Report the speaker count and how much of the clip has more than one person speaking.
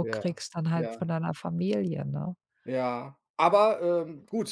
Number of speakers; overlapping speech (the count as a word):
two, about 12%